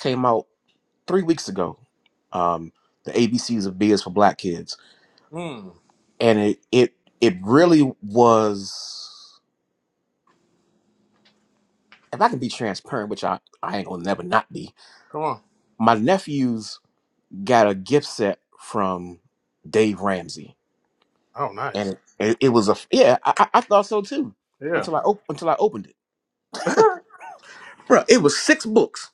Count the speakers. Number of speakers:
2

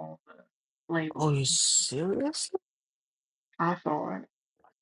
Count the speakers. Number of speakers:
2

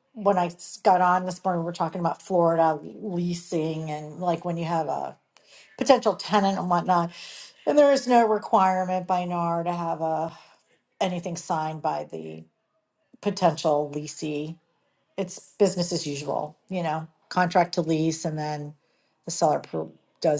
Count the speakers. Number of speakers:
1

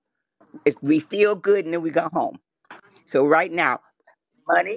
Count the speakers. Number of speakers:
1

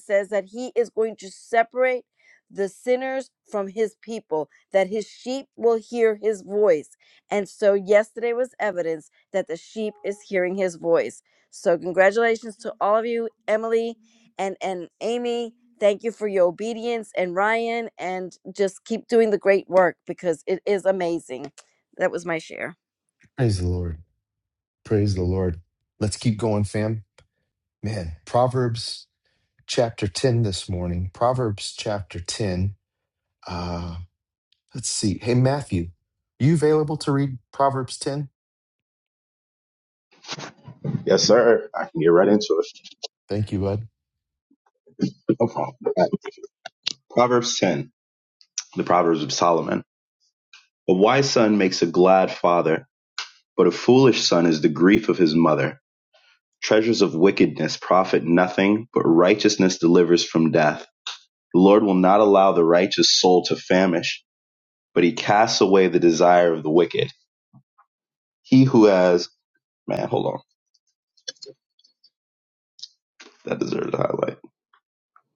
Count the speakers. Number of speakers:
3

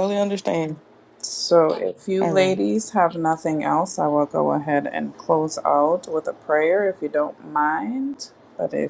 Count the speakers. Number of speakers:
2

